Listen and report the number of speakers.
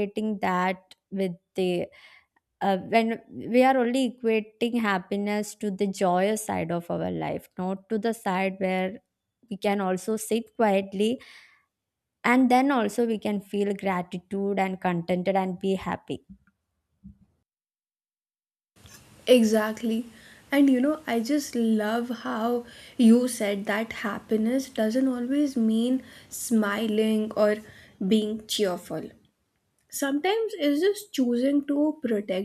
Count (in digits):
2